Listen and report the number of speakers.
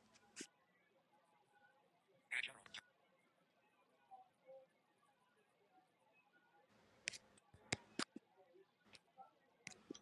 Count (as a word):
zero